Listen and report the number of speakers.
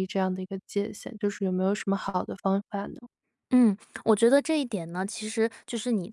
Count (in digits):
2